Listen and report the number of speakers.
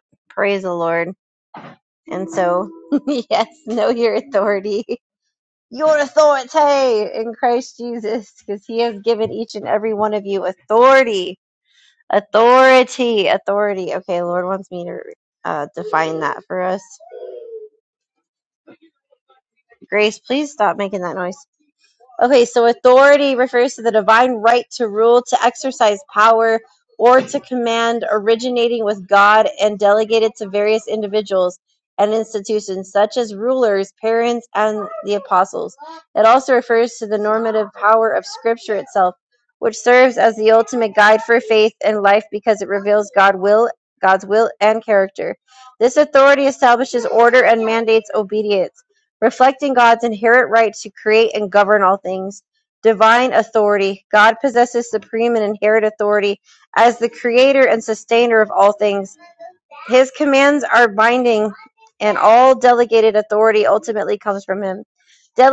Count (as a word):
one